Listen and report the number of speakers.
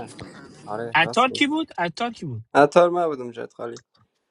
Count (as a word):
two